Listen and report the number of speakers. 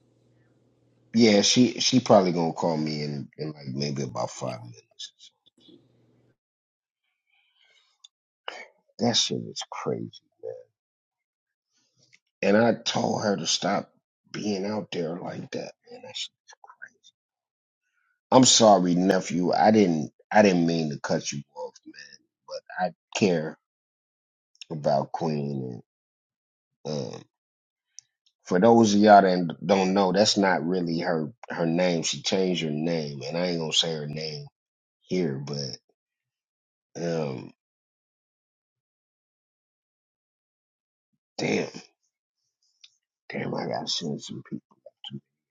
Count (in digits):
1